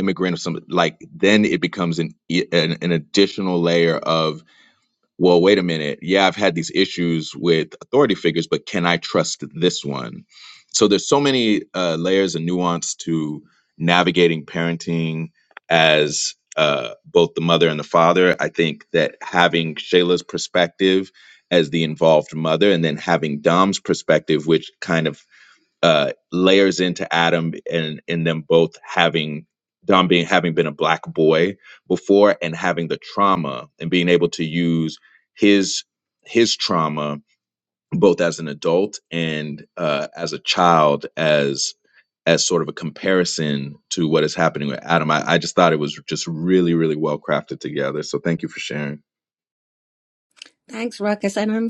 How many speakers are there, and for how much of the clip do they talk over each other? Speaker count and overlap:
2, no overlap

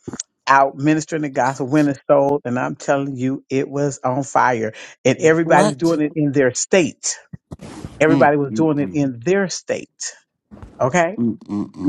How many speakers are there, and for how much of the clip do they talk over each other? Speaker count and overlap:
2, about 14%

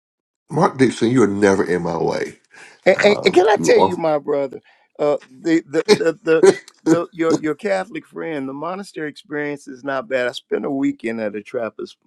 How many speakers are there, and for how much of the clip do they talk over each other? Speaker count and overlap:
2, about 9%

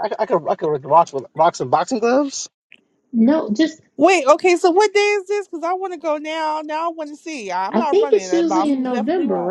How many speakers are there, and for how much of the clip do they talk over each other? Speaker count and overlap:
3, about 19%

